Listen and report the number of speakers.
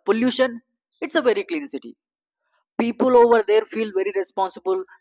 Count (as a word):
one